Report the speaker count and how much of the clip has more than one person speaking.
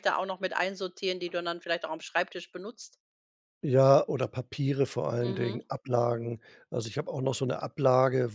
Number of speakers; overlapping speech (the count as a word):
two, about 4%